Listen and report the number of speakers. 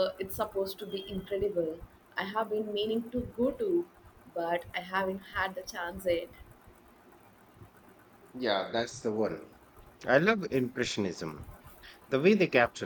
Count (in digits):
2